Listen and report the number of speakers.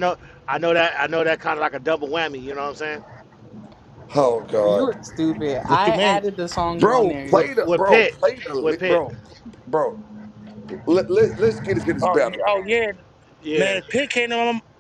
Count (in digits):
4